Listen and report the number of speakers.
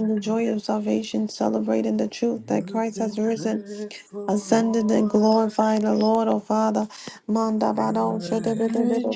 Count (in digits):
2